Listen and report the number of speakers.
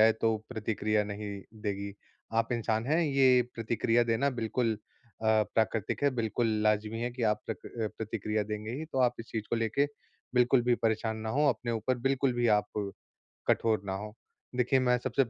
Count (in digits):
1